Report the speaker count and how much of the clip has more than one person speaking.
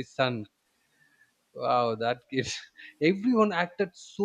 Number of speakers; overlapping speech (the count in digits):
1, no overlap